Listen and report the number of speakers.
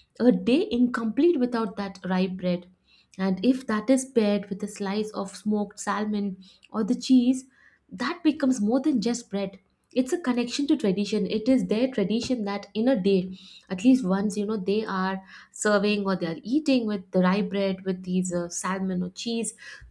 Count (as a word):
one